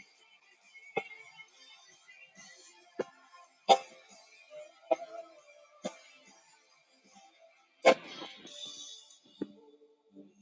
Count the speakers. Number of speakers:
zero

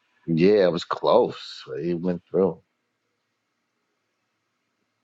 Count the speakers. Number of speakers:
one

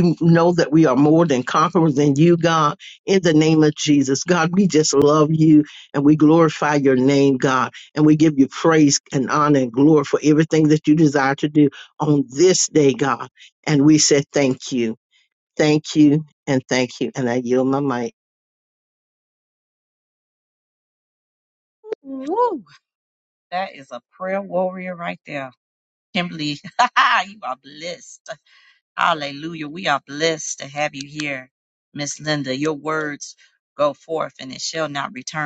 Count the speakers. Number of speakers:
two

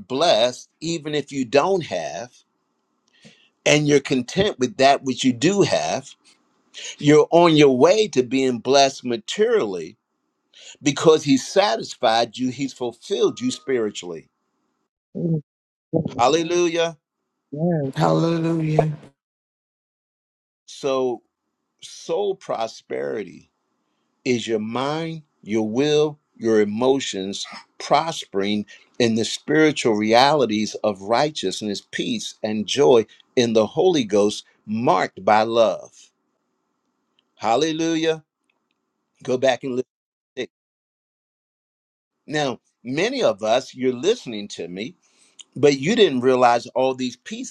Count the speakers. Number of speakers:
three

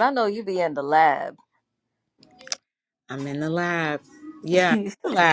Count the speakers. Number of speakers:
two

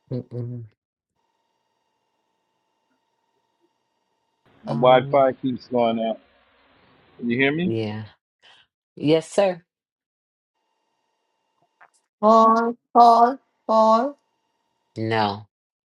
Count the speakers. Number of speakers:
three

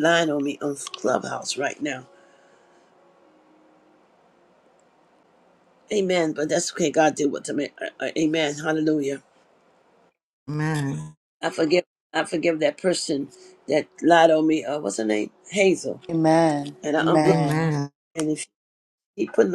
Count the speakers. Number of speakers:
three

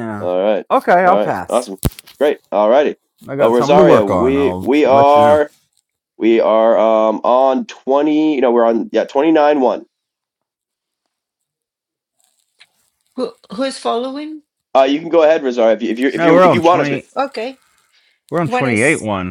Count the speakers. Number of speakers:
three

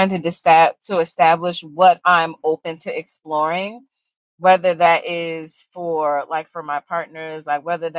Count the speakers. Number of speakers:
one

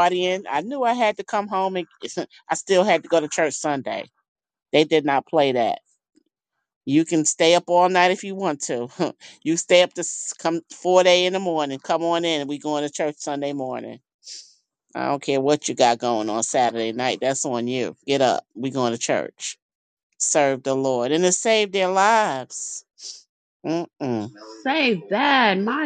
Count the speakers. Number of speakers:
two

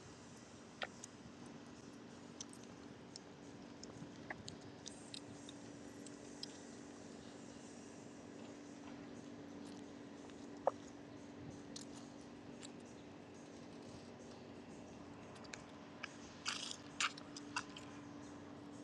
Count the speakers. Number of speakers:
zero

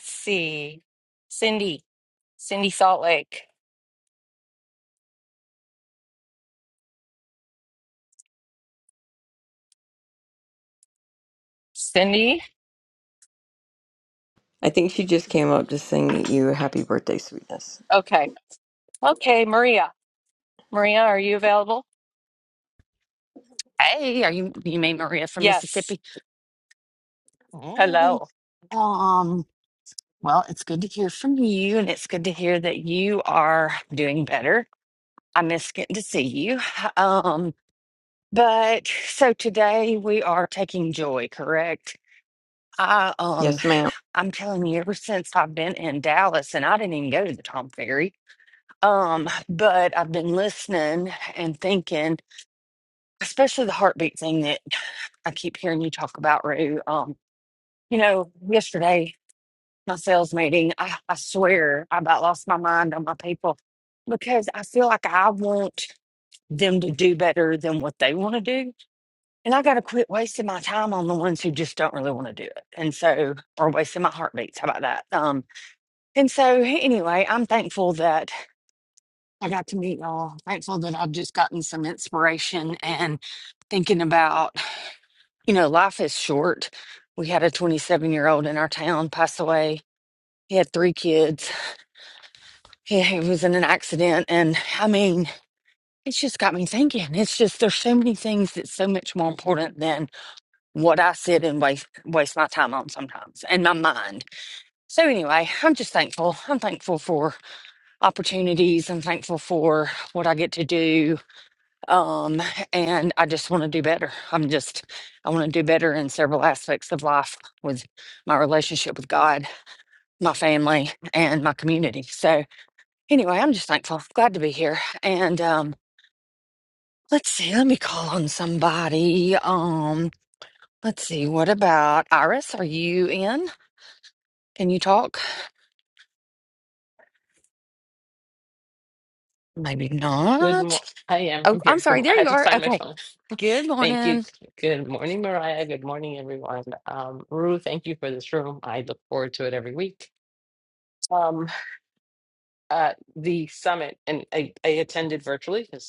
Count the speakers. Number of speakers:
four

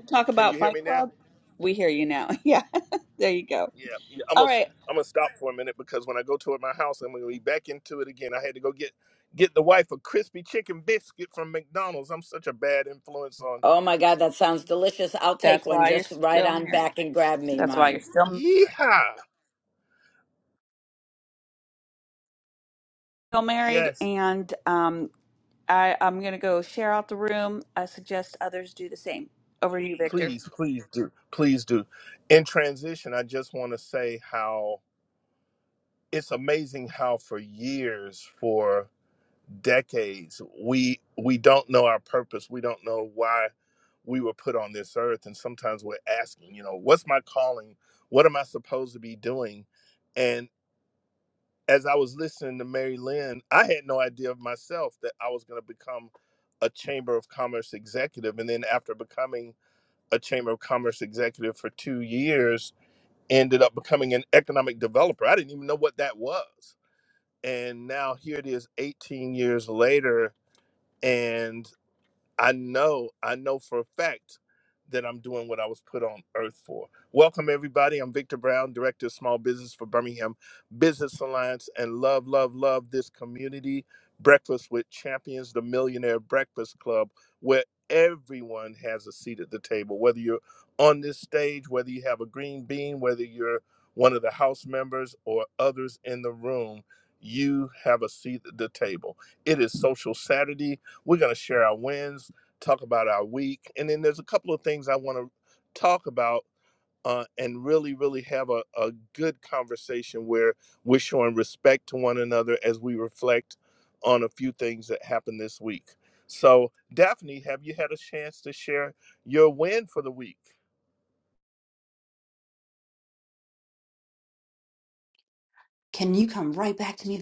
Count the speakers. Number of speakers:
four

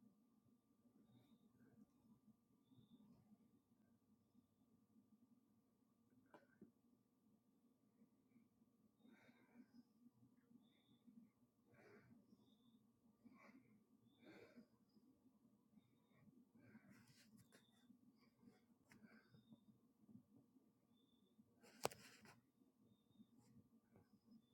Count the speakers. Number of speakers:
zero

